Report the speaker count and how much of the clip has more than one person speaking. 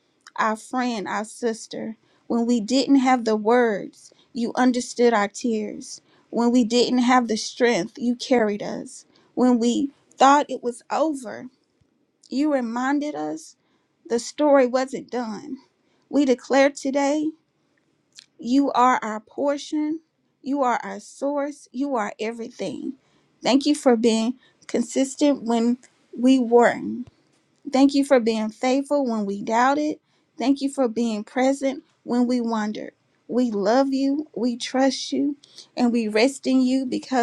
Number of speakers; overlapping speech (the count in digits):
1, no overlap